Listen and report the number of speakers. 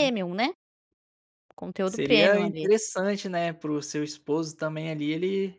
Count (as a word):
two